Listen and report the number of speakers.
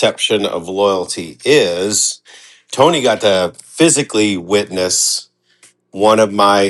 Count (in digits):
1